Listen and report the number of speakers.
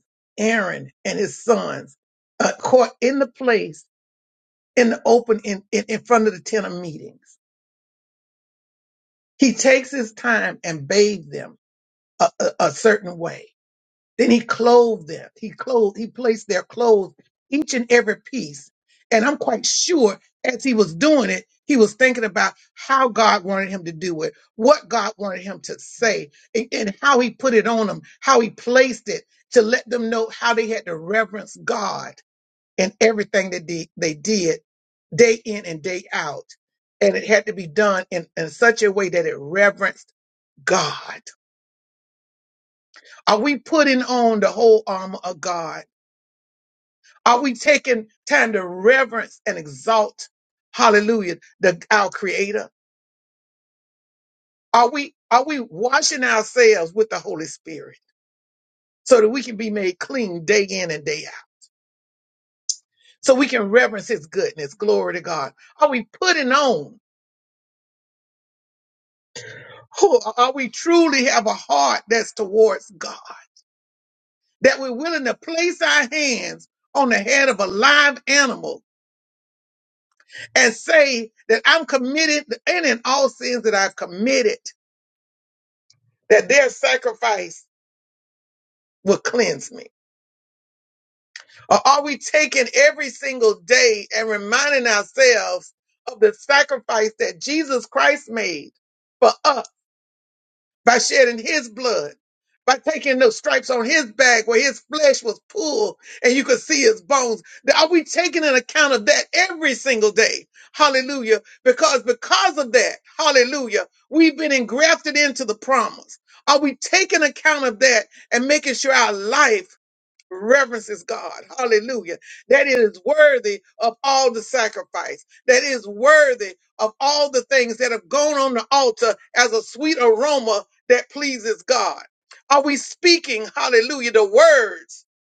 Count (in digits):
1